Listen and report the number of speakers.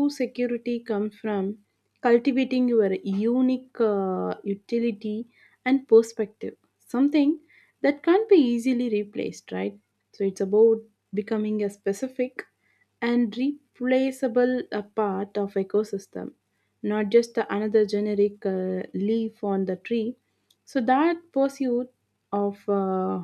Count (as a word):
one